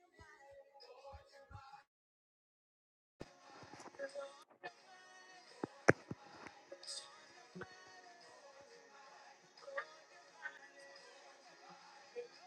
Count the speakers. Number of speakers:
0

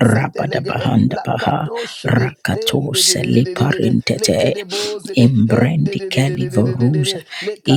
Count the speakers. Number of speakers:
2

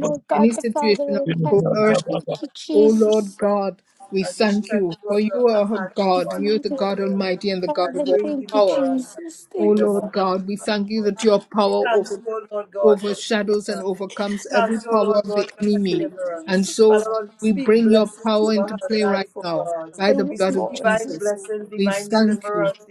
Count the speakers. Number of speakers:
3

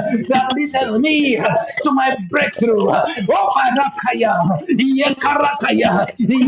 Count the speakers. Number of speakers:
1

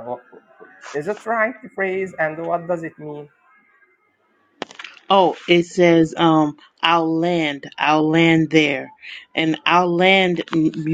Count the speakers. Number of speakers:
2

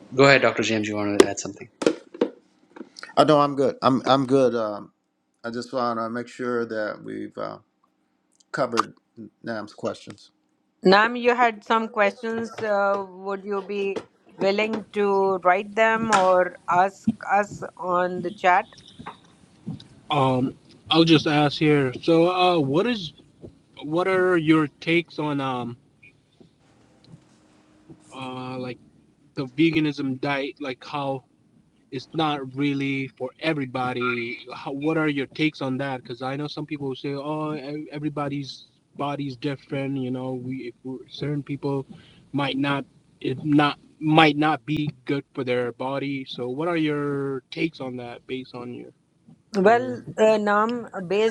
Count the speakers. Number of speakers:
4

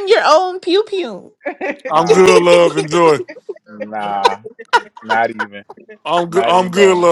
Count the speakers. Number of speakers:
3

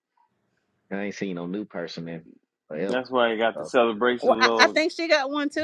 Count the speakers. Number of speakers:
3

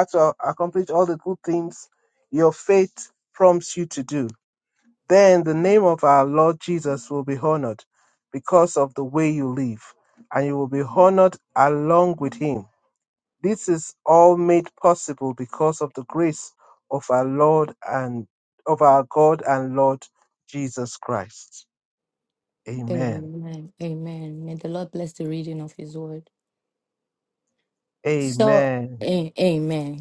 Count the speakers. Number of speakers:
2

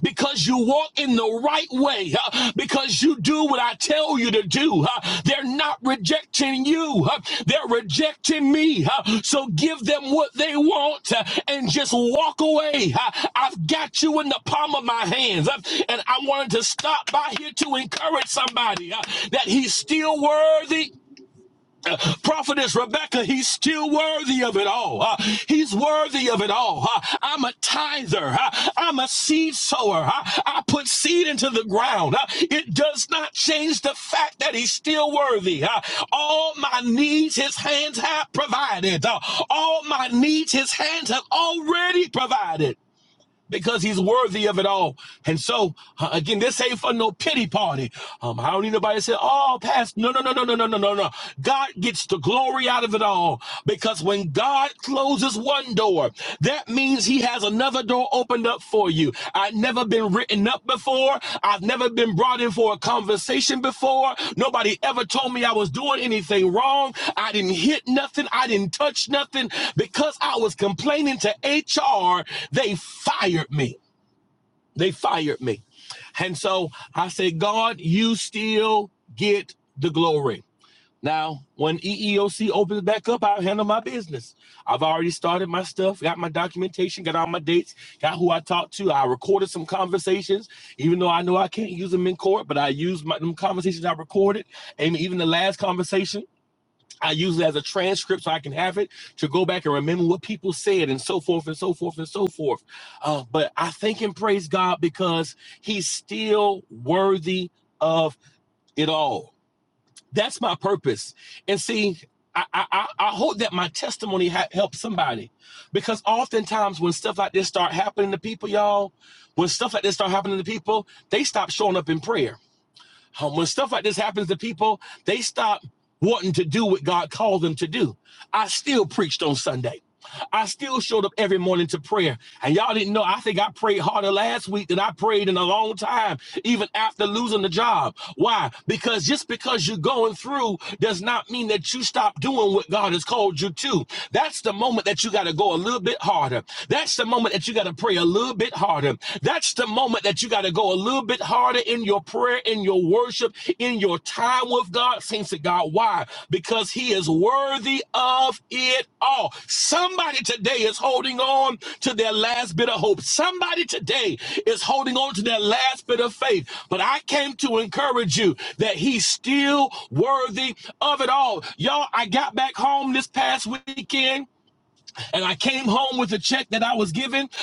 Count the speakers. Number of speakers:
1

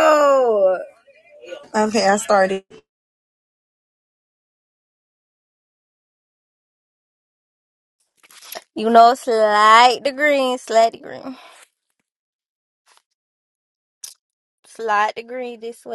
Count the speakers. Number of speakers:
2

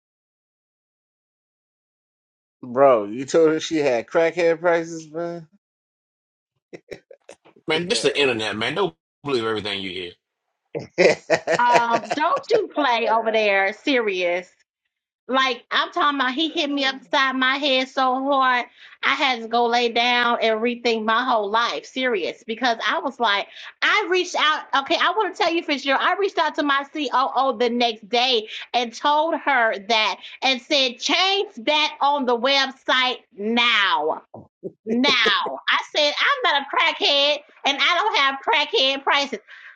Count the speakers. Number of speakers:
3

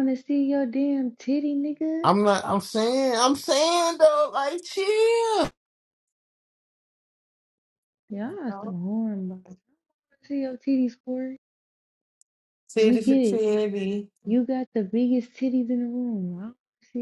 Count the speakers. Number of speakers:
3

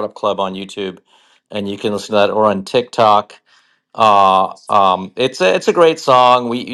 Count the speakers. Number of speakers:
1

